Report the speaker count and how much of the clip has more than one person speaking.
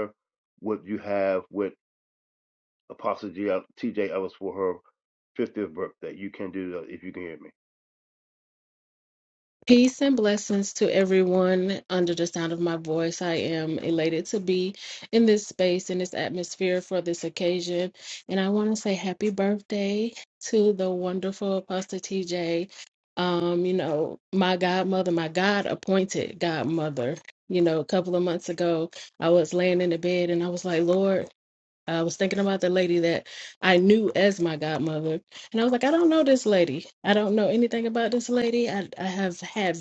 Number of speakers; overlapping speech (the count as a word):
two, no overlap